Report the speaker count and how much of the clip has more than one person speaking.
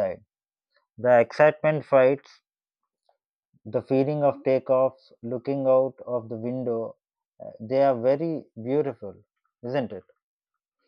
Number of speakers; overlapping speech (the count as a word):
one, no overlap